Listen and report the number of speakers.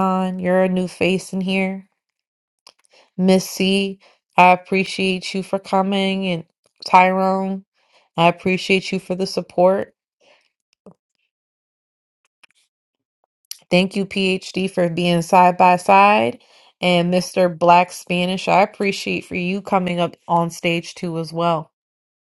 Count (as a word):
one